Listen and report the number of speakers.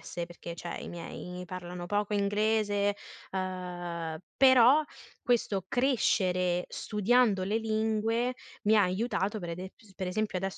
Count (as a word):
one